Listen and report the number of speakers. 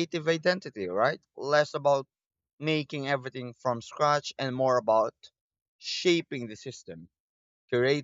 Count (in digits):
1